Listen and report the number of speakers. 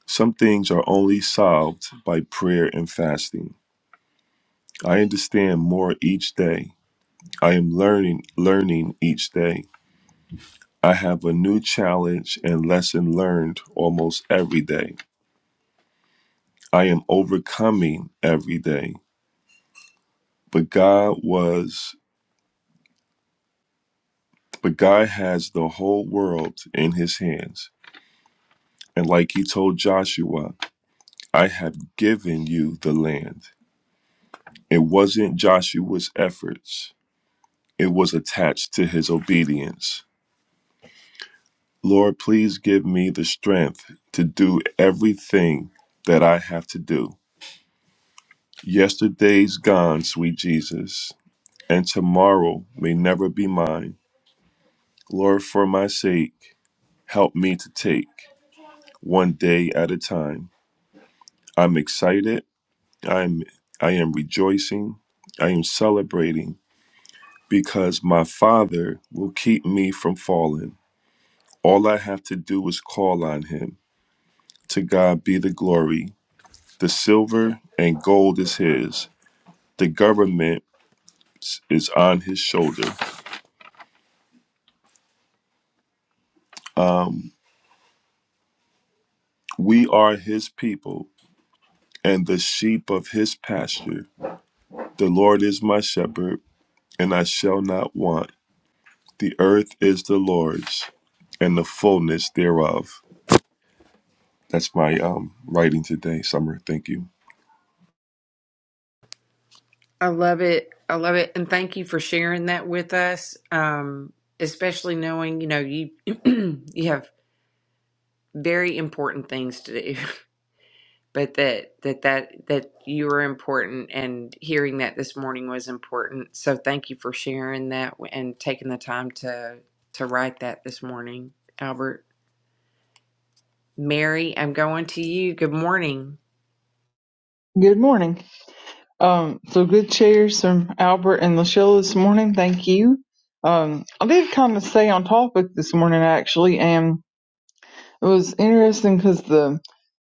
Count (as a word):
three